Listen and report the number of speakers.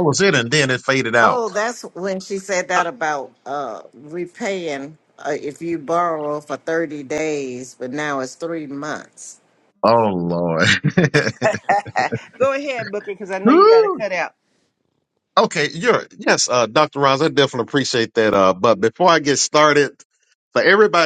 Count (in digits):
3